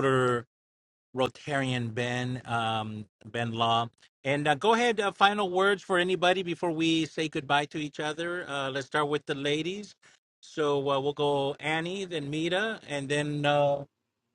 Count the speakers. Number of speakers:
one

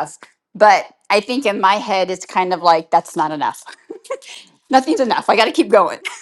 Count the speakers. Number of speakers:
one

